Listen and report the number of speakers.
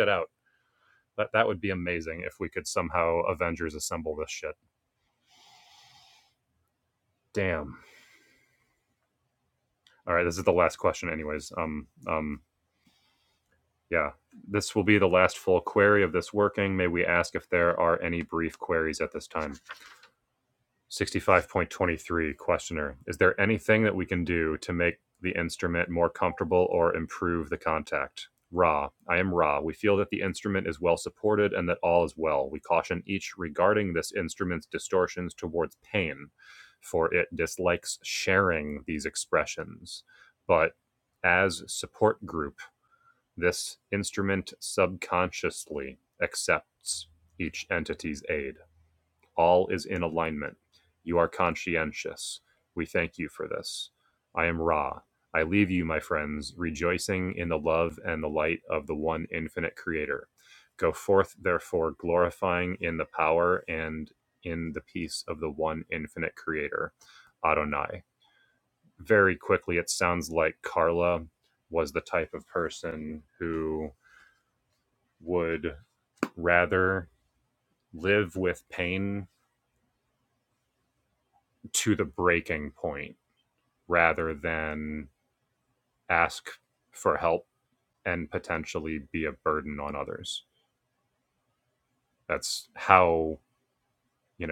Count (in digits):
1